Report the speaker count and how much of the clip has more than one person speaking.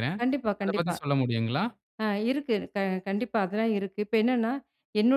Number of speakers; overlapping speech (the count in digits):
2, about 8%